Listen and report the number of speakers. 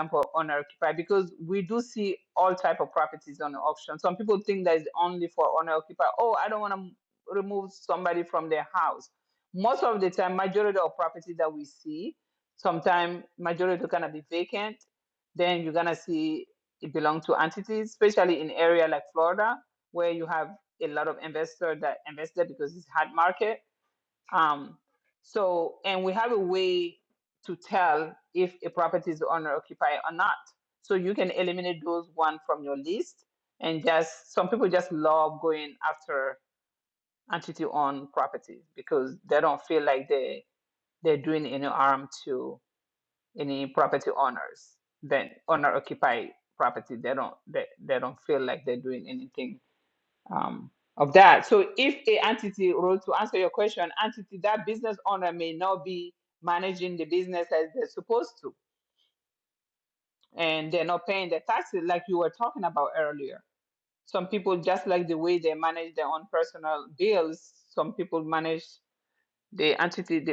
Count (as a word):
one